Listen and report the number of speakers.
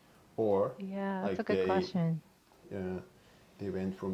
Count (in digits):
2